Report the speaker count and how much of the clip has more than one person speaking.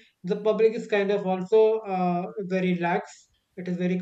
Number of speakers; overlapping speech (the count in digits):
1, no overlap